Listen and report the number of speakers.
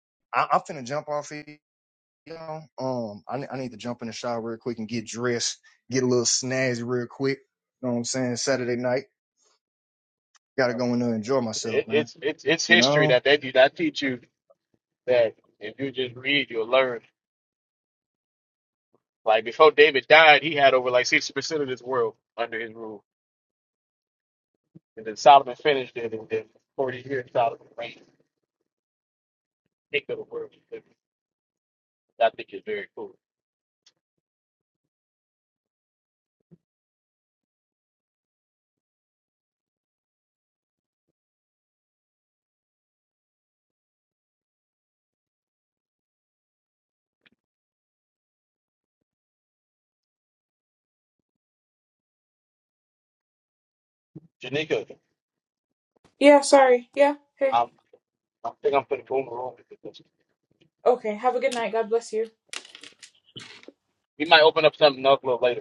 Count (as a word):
three